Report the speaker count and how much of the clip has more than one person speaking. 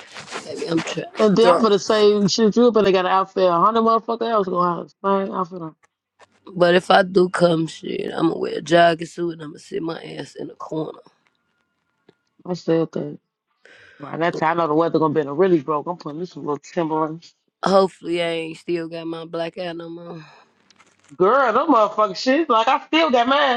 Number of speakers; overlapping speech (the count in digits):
2, about 2%